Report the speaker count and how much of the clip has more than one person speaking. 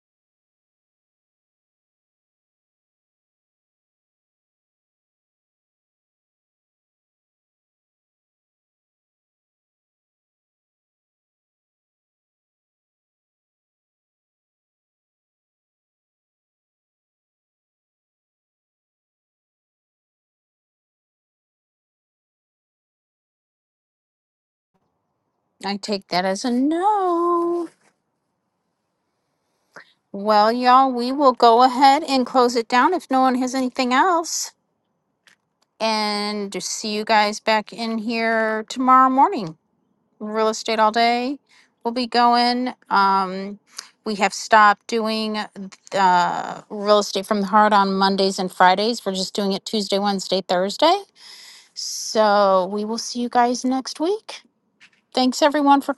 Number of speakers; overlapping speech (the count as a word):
one, no overlap